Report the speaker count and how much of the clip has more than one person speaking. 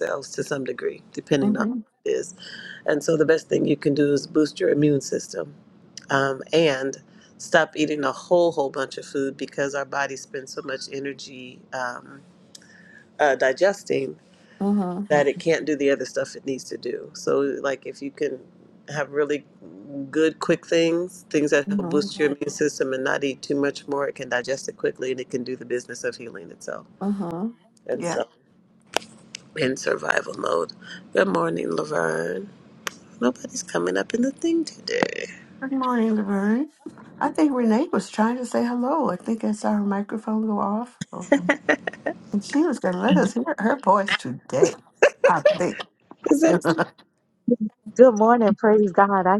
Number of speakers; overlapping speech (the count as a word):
three, about 2%